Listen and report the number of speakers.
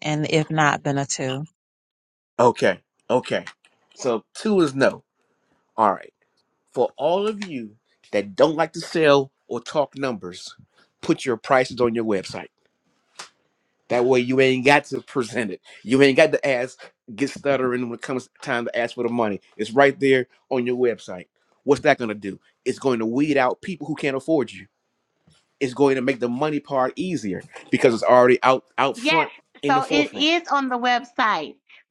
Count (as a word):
three